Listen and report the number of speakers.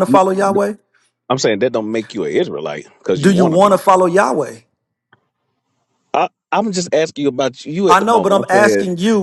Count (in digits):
2